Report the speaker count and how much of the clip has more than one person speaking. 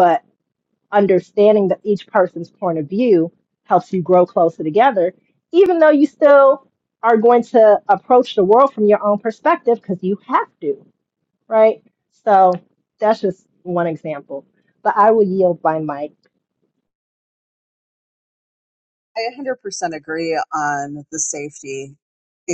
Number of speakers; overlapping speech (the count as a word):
two, no overlap